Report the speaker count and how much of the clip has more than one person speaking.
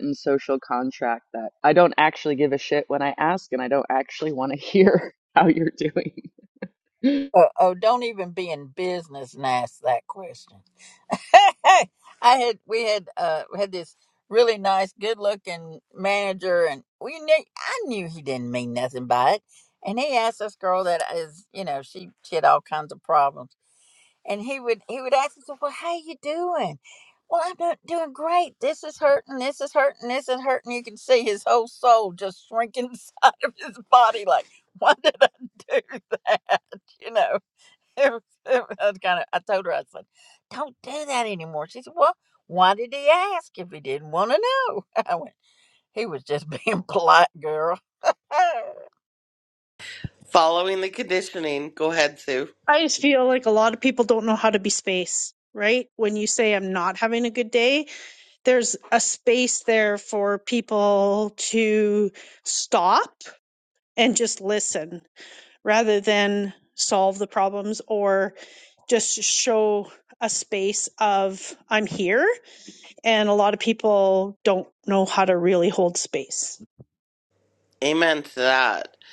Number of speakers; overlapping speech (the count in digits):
4, no overlap